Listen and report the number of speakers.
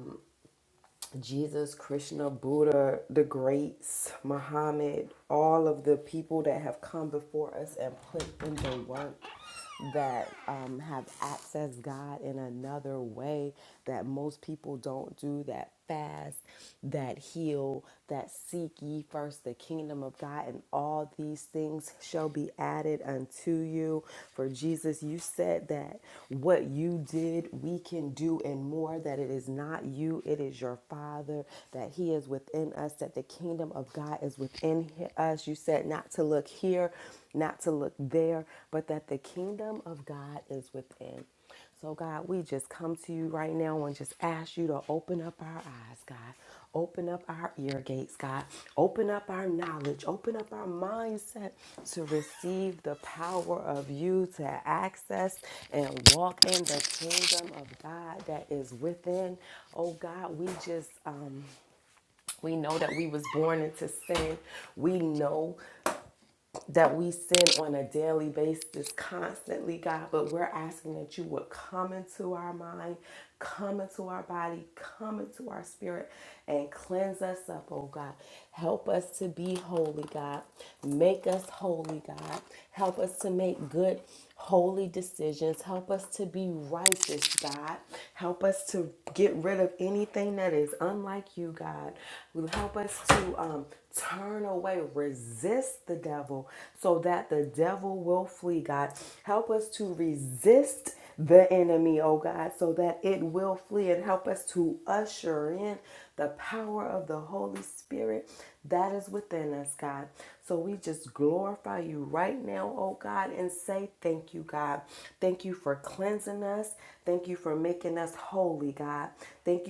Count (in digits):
1